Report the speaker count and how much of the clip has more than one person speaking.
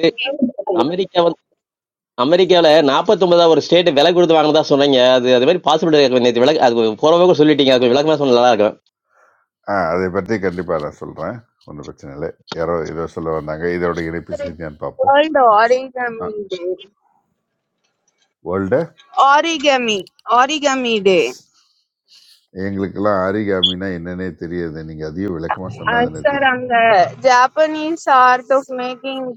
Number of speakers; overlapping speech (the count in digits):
3, about 3%